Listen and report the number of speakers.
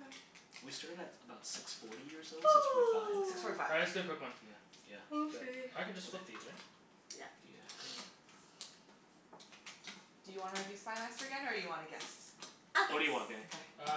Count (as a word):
four